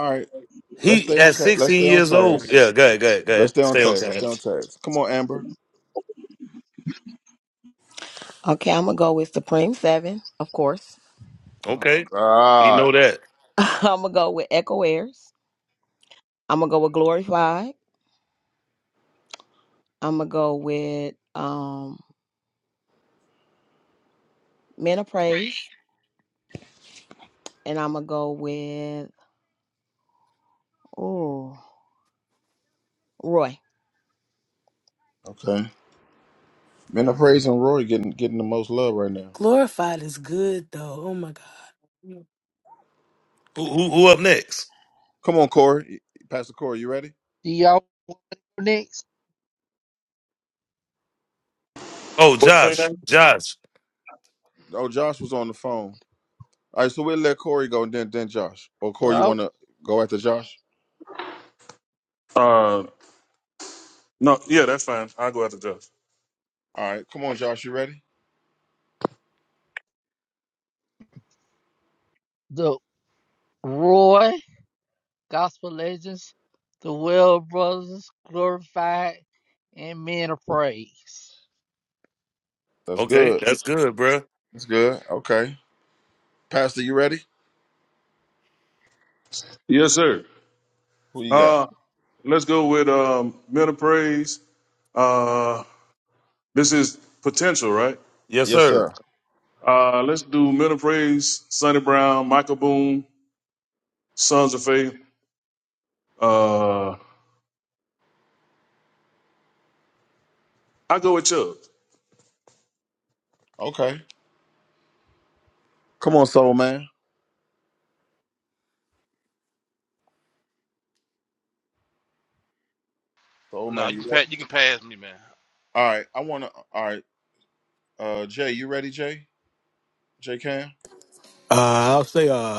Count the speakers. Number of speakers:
eight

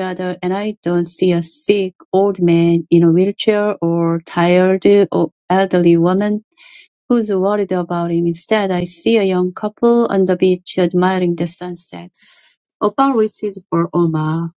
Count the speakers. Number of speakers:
one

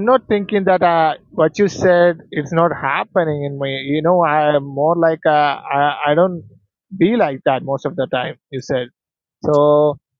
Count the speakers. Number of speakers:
one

